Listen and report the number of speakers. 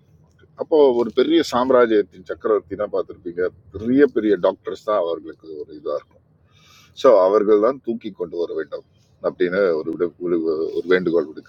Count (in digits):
1